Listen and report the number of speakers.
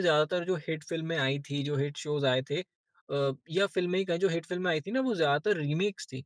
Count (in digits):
1